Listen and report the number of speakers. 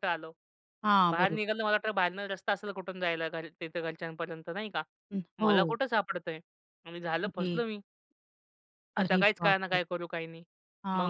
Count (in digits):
2